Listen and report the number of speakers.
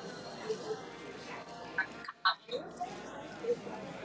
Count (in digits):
0